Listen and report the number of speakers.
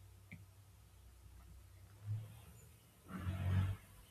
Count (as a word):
zero